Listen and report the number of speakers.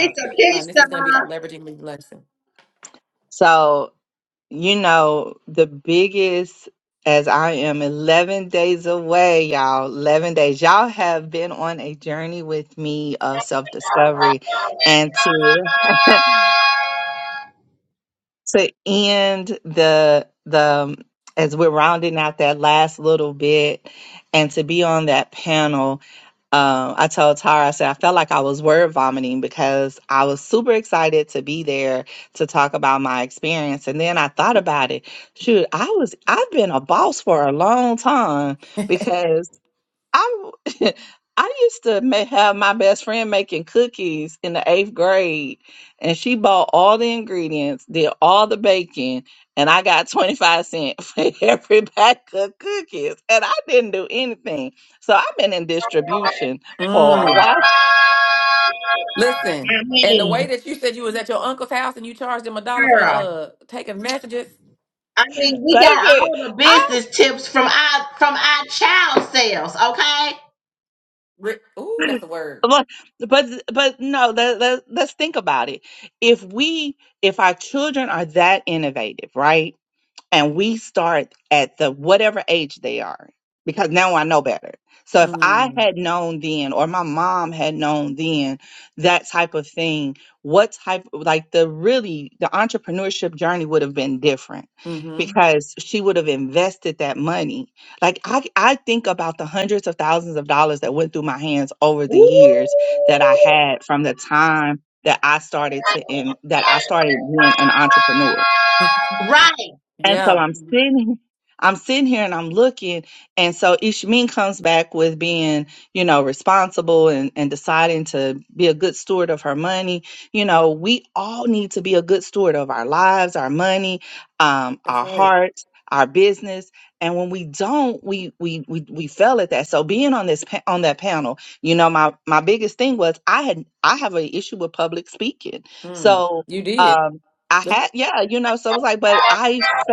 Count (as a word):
three